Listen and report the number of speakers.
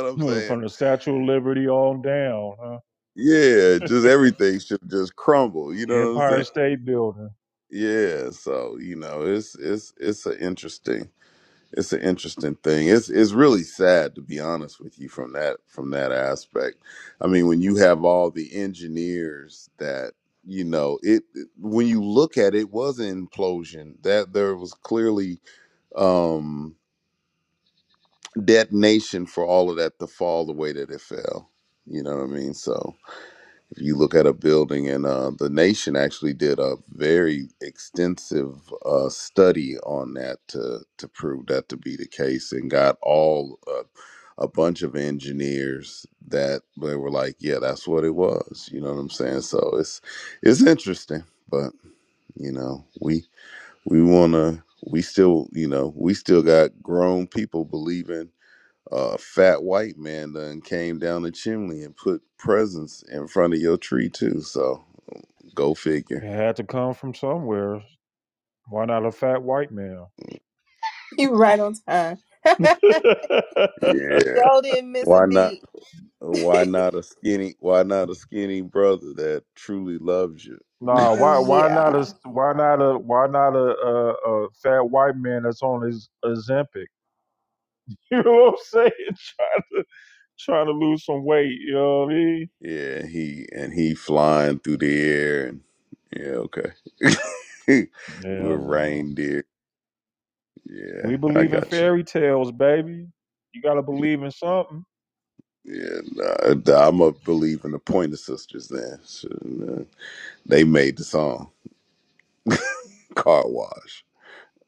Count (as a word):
three